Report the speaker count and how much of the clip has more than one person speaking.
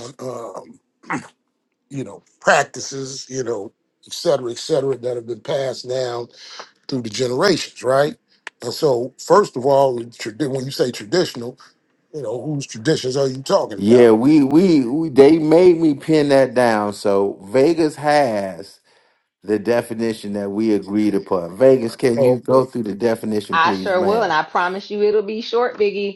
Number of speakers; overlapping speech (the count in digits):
3, about 4%